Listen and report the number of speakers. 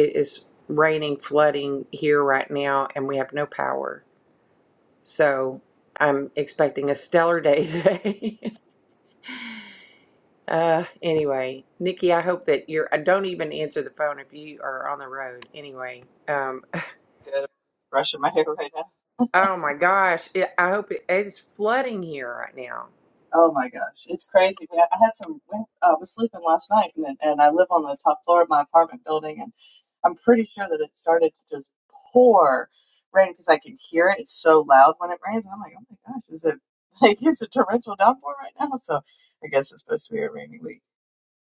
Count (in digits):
2